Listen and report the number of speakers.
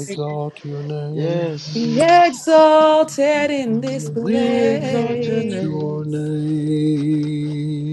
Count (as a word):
three